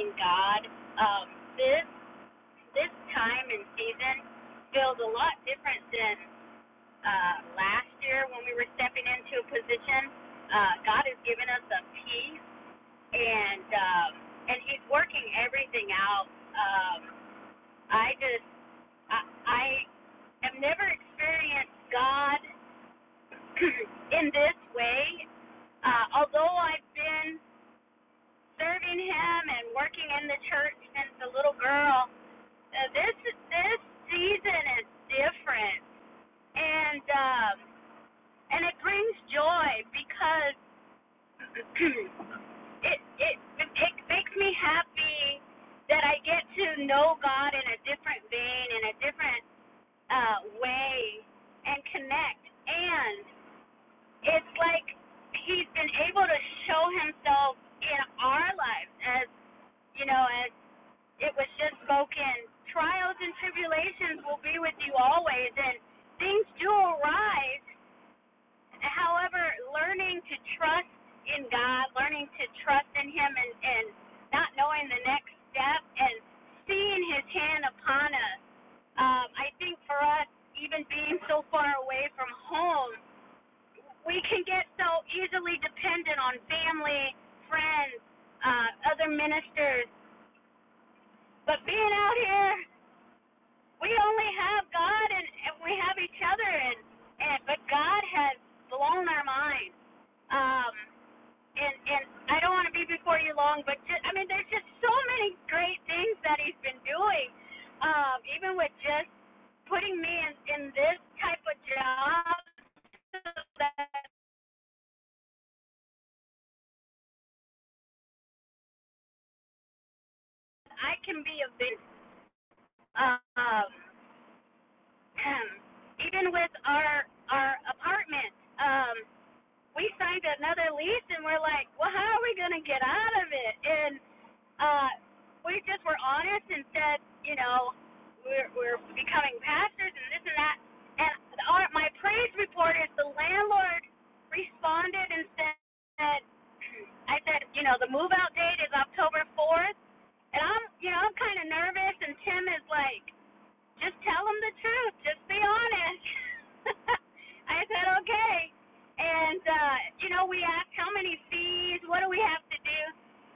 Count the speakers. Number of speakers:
1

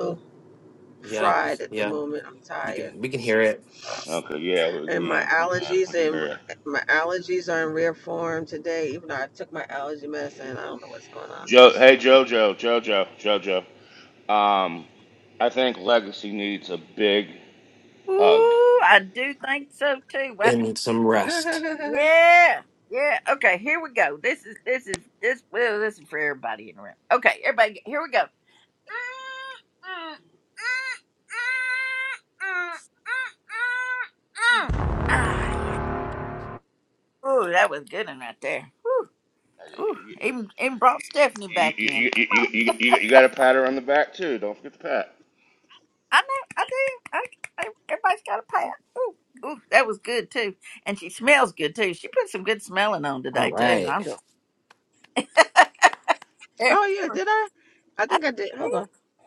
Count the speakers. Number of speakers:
4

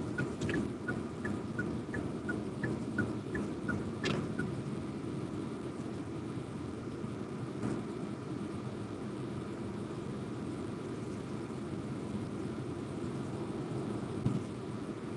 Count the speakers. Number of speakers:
0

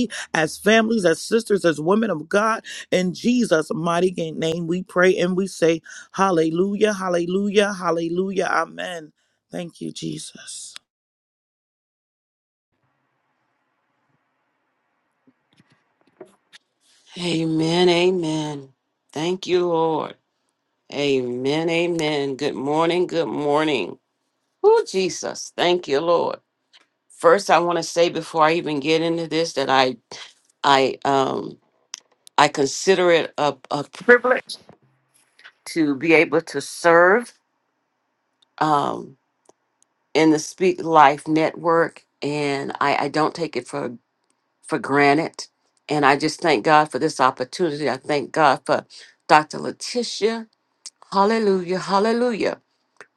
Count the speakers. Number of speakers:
2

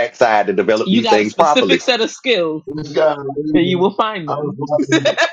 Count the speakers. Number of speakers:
3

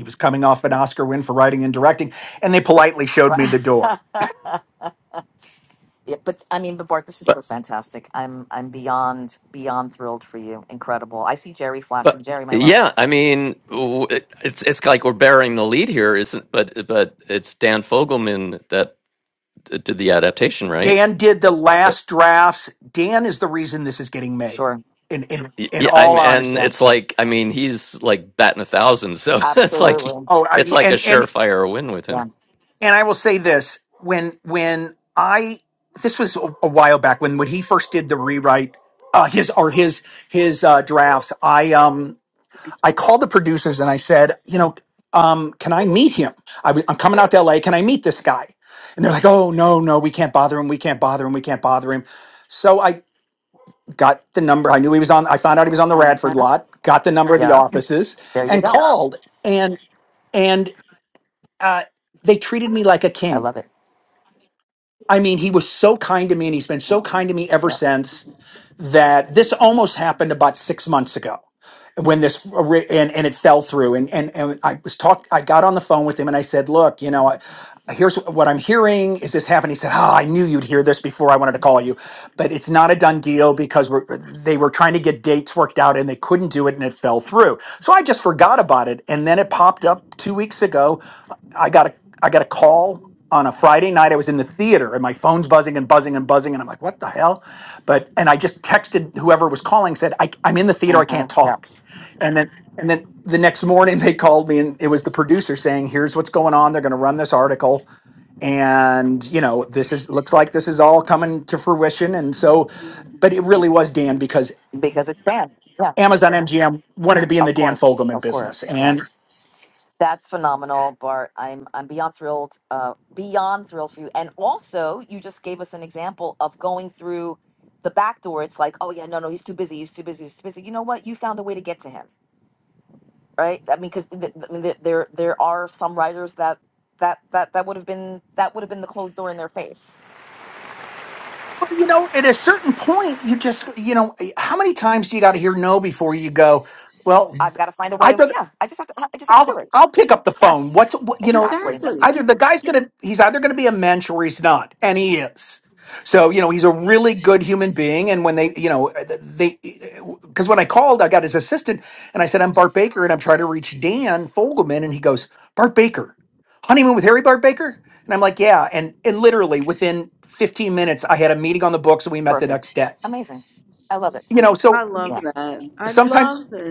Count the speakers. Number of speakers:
4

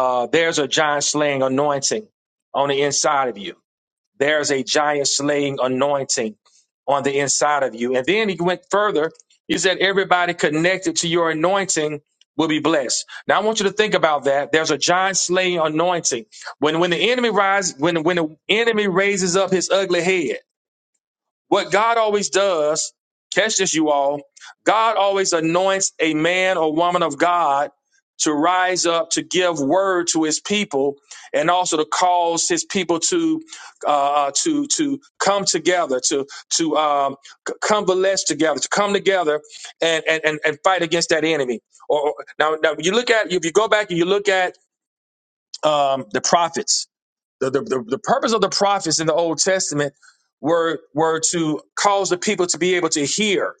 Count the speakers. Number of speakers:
1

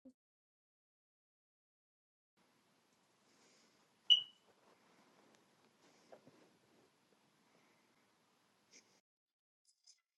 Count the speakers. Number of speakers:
0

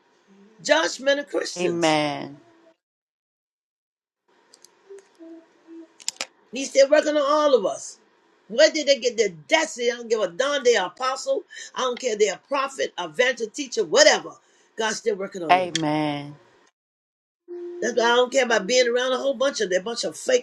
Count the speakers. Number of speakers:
2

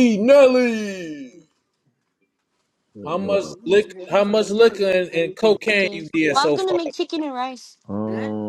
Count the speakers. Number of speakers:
3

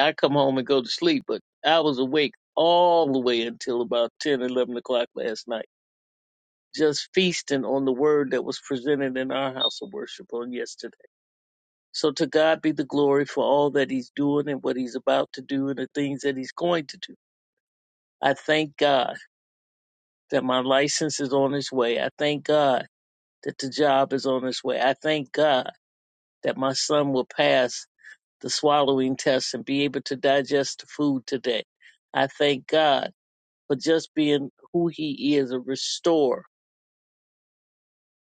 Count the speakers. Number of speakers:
1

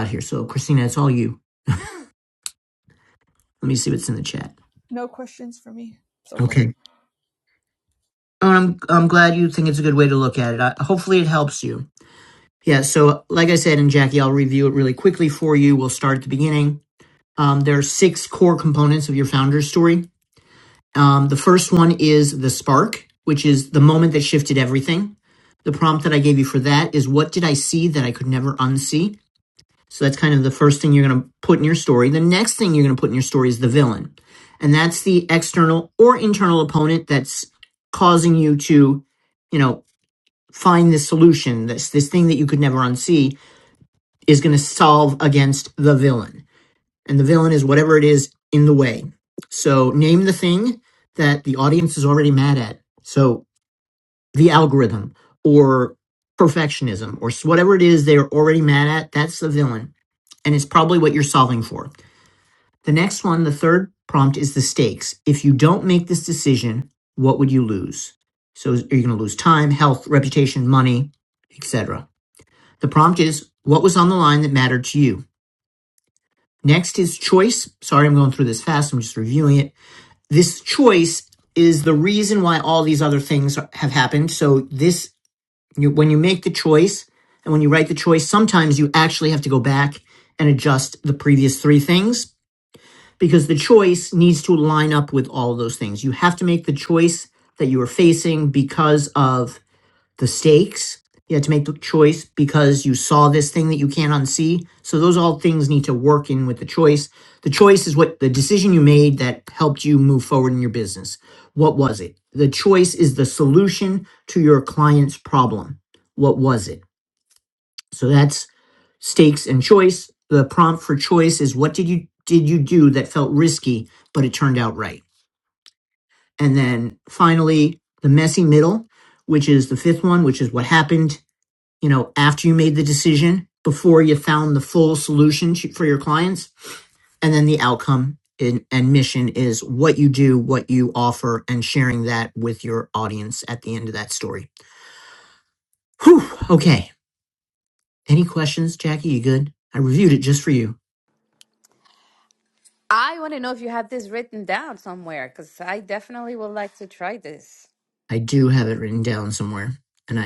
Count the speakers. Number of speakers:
3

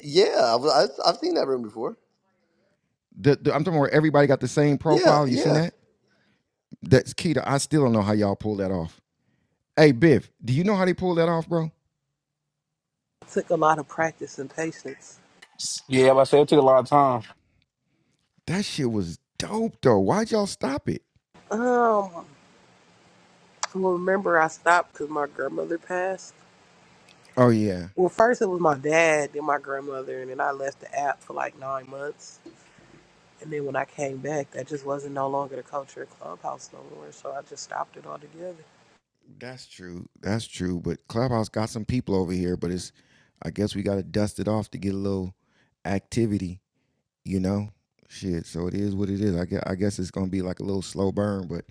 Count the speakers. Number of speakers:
4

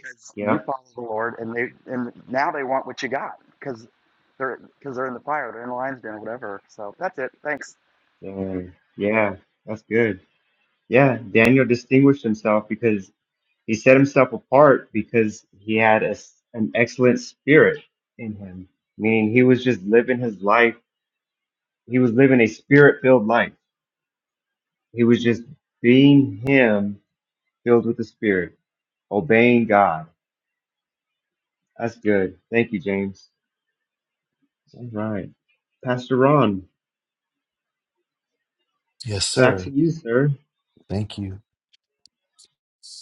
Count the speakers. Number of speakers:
3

